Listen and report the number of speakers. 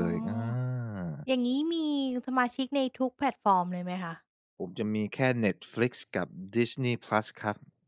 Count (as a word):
two